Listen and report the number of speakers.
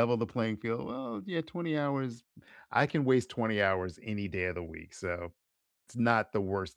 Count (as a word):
one